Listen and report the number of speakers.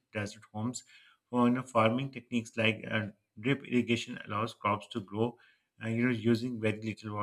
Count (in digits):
1